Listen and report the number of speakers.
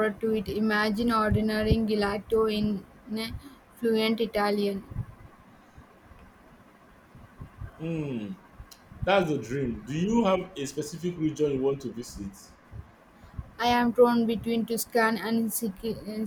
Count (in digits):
2